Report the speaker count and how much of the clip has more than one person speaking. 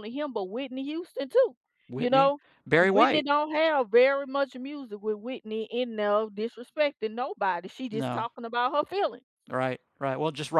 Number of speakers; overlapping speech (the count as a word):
two, about 10%